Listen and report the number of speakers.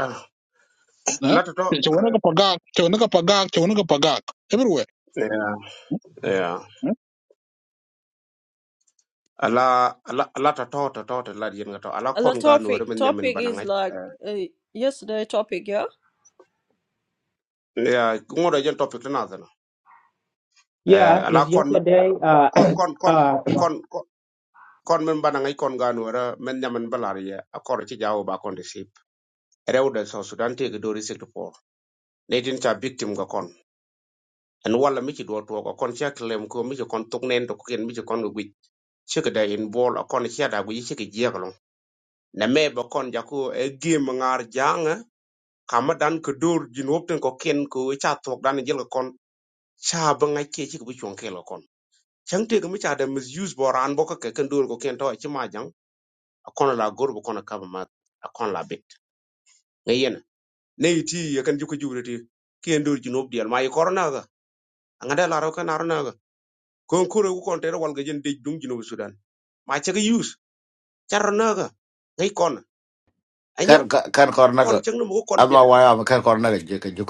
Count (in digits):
5